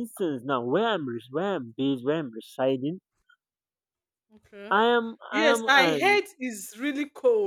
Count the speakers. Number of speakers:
2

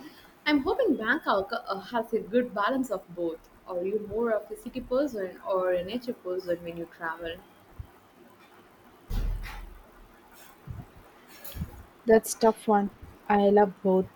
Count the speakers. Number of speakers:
2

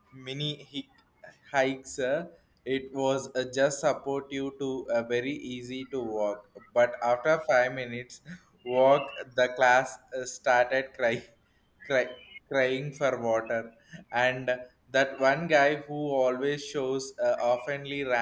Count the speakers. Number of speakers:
1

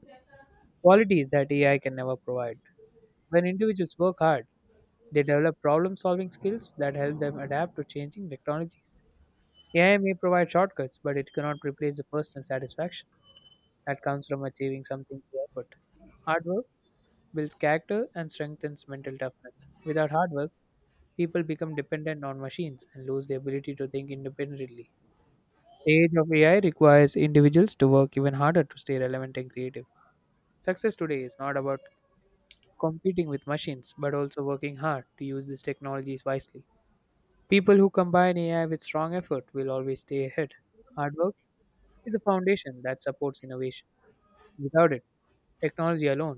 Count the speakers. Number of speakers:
1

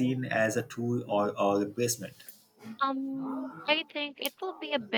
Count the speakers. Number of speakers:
2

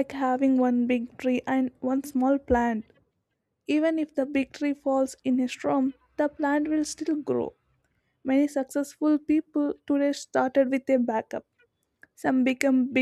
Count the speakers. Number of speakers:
1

